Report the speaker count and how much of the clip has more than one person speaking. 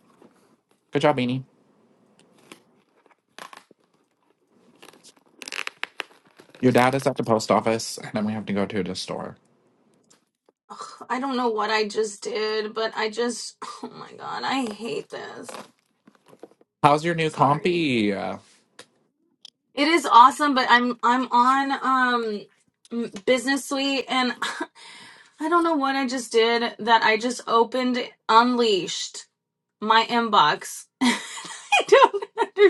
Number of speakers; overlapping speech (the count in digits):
2, about 1%